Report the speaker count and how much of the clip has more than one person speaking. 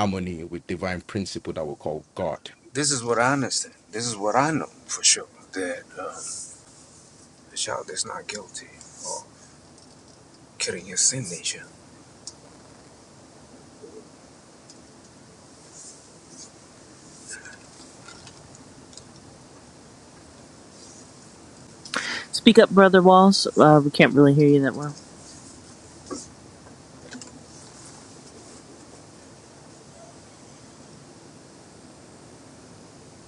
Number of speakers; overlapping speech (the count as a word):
three, no overlap